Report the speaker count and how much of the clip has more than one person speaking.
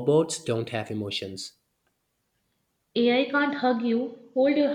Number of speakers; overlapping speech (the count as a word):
two, no overlap